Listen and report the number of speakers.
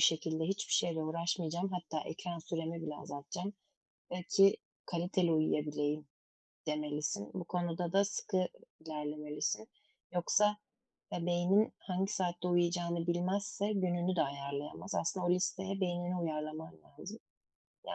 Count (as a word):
one